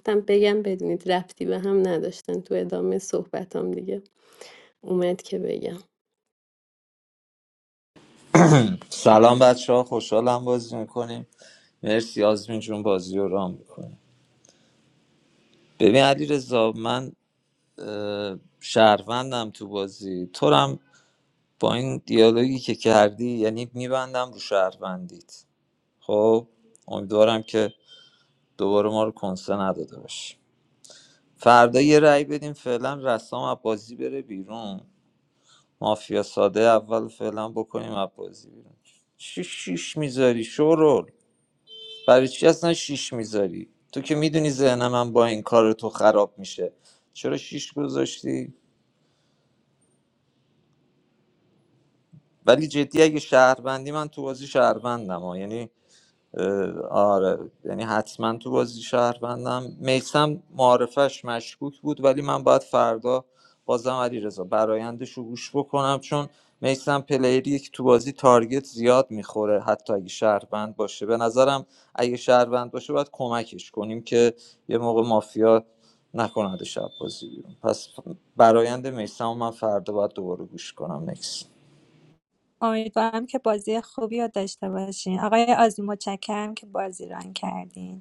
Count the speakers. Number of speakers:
three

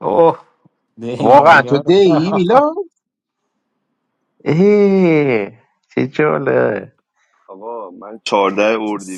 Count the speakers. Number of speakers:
three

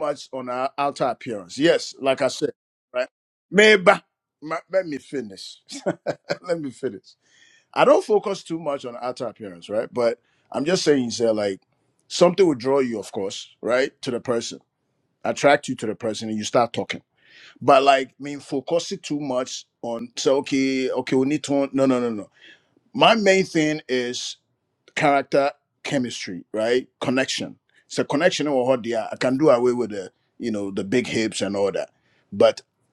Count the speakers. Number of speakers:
one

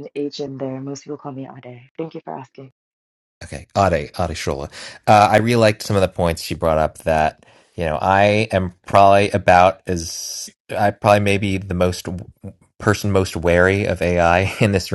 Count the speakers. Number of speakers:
two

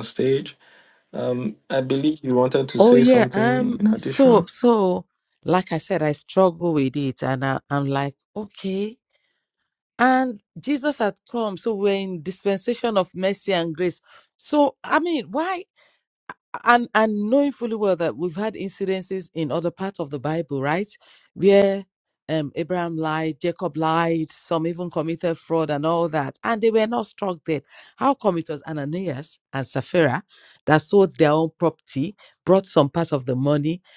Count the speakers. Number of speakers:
two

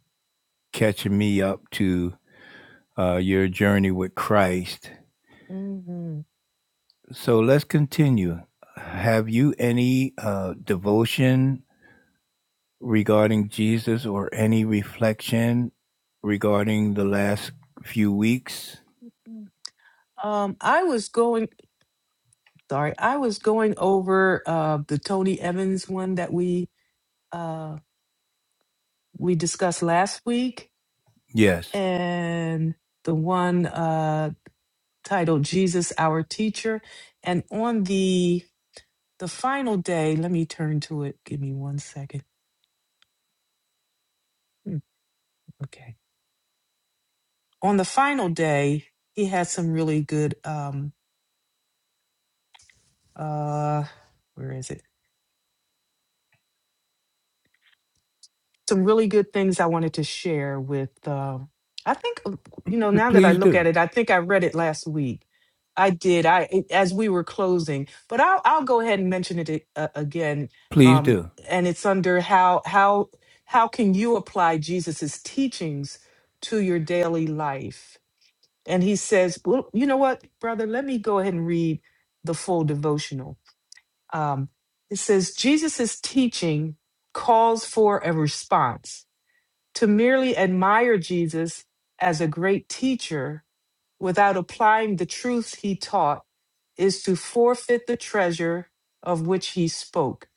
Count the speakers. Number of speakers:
two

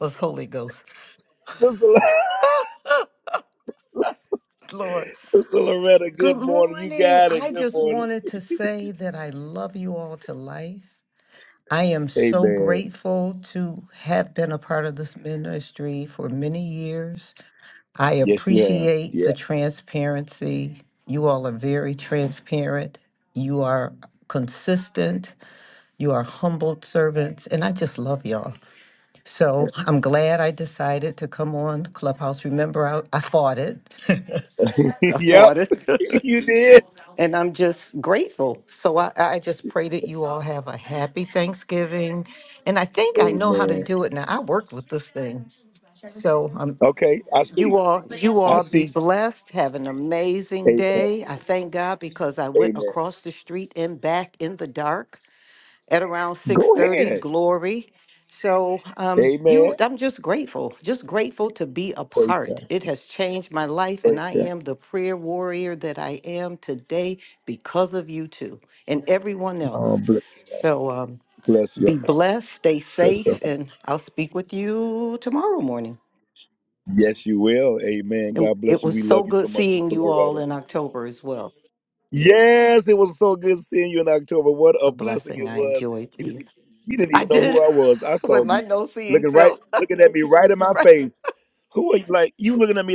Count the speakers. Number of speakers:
two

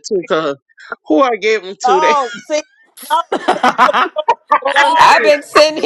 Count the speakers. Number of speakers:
three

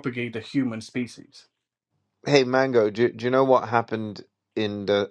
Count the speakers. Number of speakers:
two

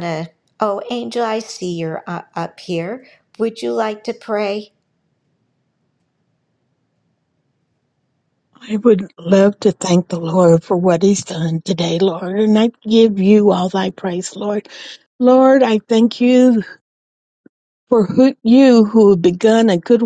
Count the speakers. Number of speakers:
two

